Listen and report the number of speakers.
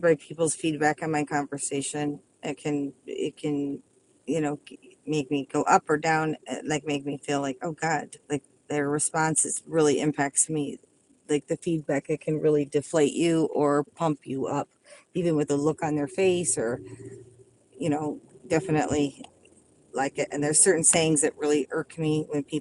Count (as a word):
one